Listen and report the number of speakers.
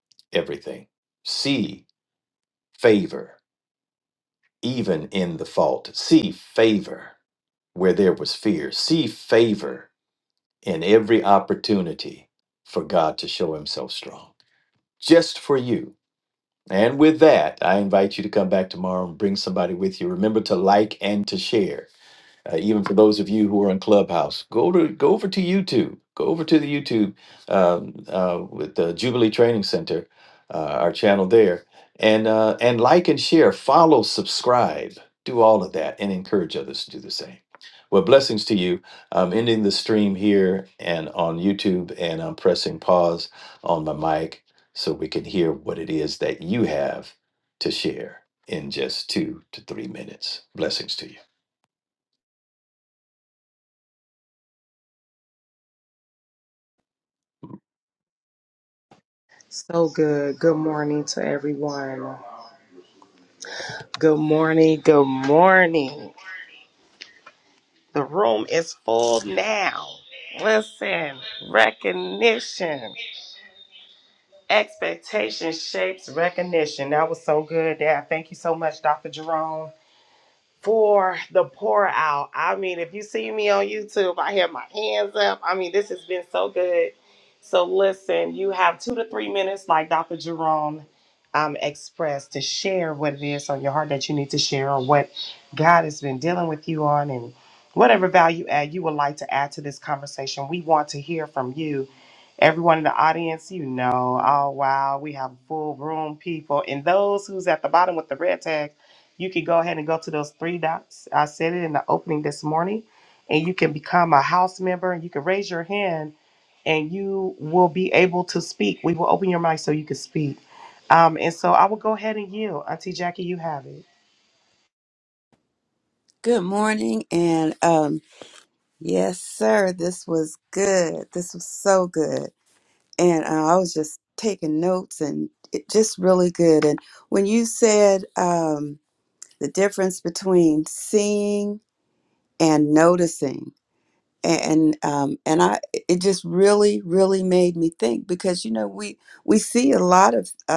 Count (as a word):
three